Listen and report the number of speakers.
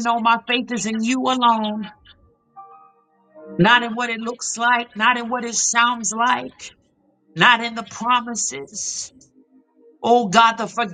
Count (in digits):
1